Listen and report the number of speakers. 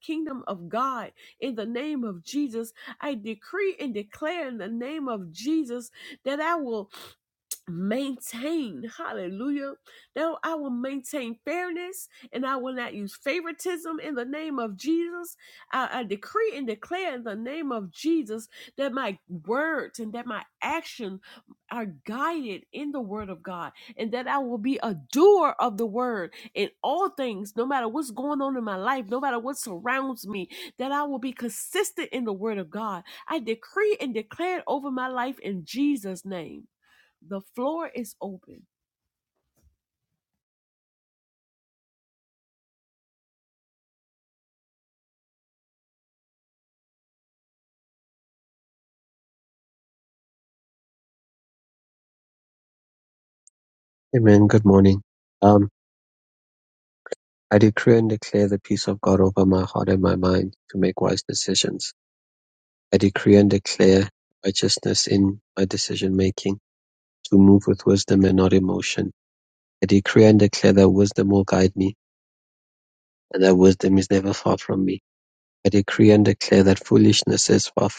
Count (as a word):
two